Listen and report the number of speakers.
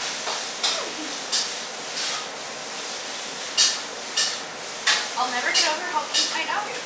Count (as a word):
one